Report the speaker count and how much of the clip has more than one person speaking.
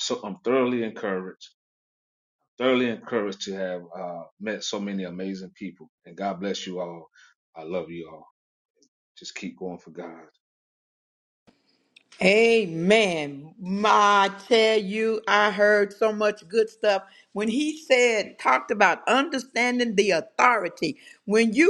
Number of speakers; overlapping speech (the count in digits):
2, no overlap